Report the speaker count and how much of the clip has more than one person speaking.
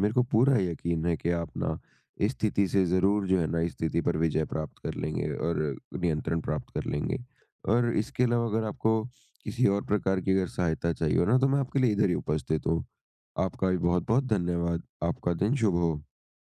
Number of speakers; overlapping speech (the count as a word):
one, no overlap